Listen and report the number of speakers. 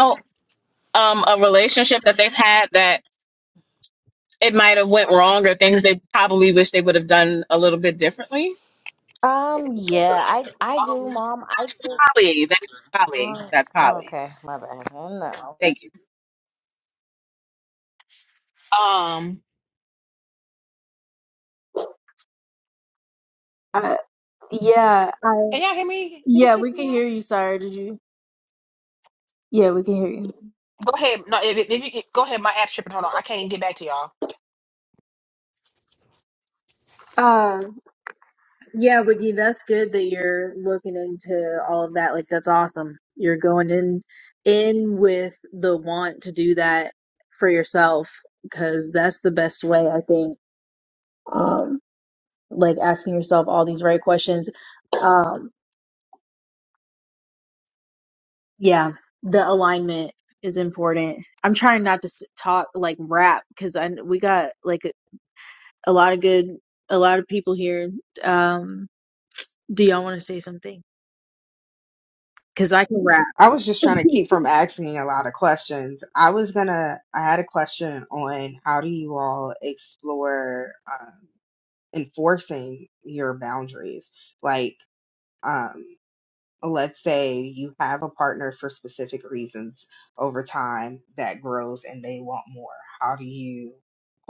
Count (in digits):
5